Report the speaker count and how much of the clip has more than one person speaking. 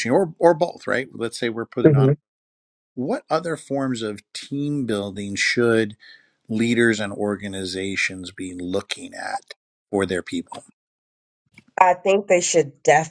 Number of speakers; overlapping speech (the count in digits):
2, about 2%